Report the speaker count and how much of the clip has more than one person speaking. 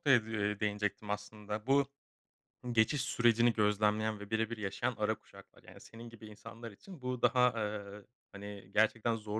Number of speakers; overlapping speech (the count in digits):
1, no overlap